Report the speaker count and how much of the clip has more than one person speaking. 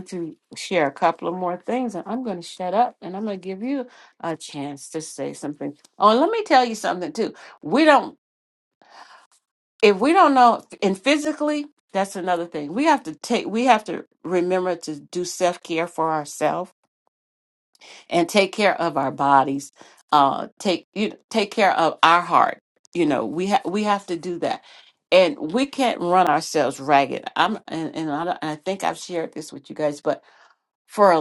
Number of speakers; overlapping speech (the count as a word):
one, no overlap